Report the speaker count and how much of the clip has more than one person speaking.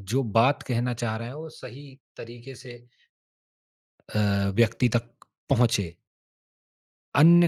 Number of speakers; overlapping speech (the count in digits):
1, no overlap